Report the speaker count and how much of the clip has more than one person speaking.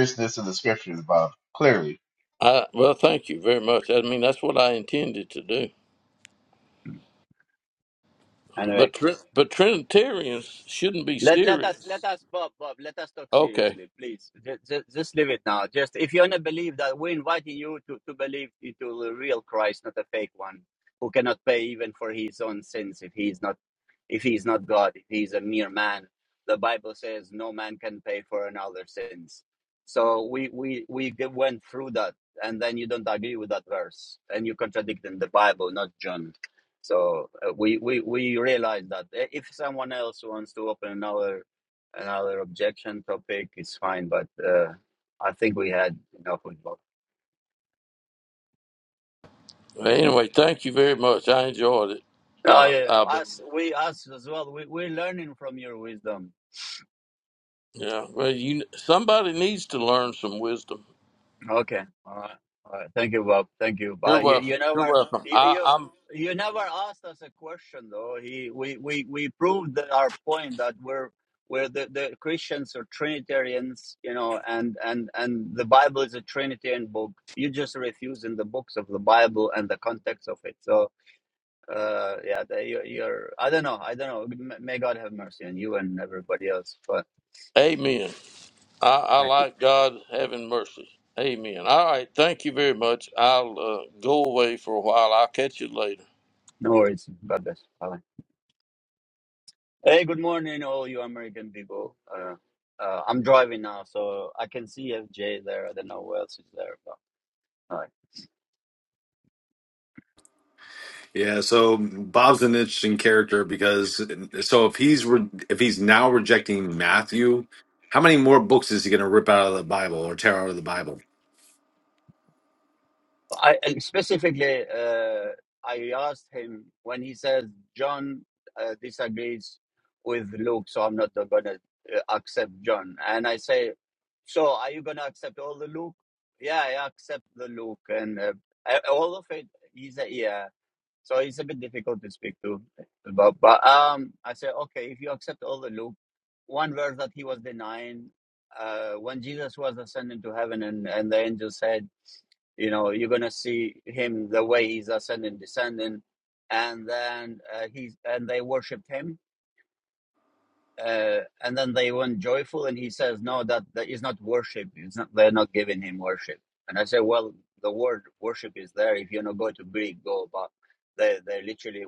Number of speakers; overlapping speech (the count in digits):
4, about 2%